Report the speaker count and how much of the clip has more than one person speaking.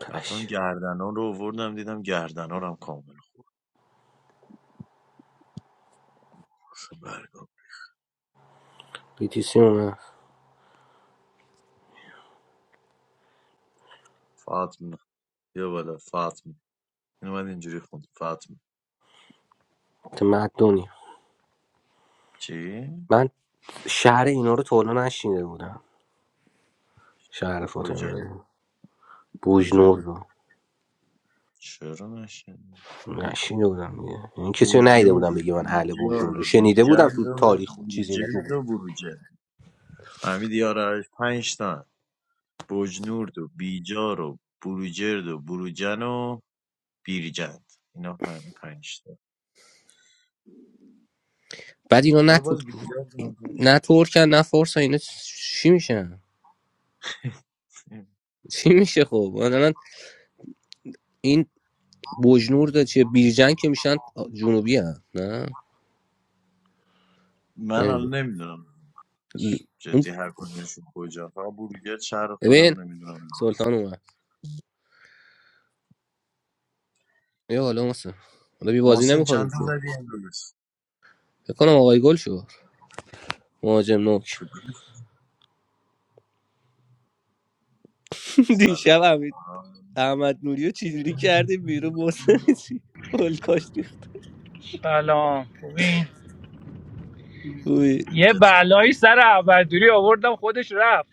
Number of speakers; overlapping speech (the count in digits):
3, about 7%